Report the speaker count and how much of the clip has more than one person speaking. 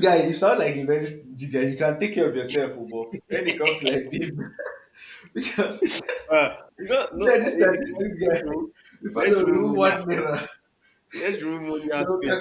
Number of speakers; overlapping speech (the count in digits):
2, about 21%